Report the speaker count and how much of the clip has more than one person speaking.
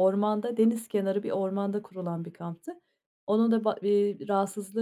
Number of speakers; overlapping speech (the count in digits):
1, no overlap